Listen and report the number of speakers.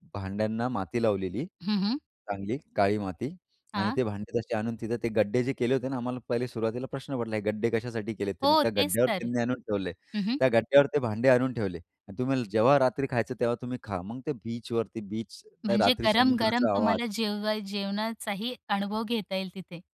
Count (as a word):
two